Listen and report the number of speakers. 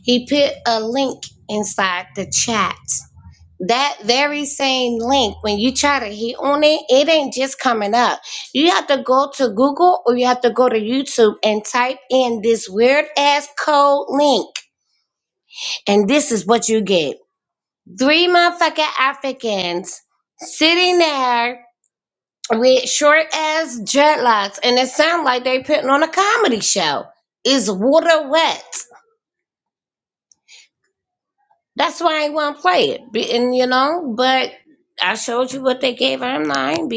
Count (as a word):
one